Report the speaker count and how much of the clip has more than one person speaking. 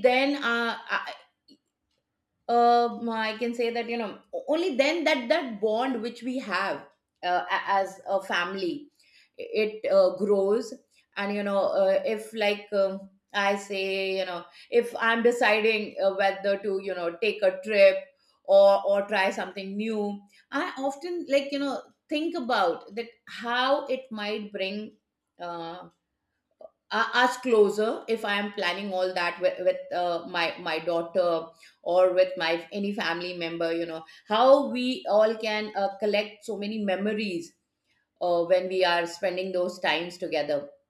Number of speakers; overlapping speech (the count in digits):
1, no overlap